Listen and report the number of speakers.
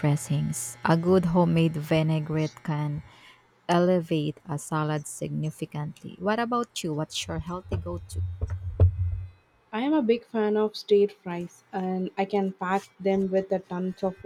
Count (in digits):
2